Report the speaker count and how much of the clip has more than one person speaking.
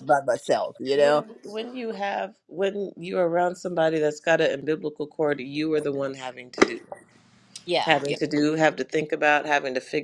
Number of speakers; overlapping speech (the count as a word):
two, about 6%